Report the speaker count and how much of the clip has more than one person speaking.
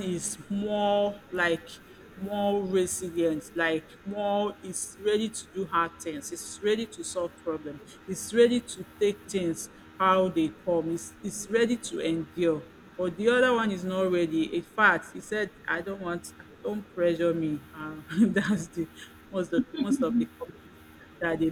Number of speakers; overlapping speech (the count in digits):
1, no overlap